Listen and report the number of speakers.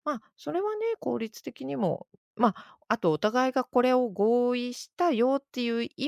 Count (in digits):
1